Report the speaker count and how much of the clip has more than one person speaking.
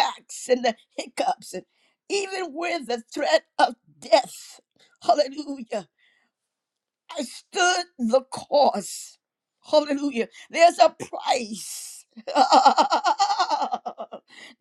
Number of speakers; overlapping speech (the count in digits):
1, no overlap